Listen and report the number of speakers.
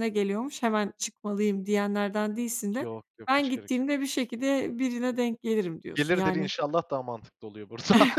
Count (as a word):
two